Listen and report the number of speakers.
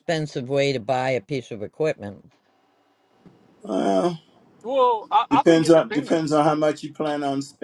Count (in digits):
3